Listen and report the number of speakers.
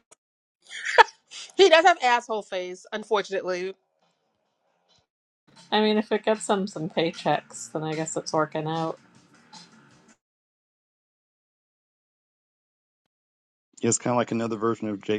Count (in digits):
3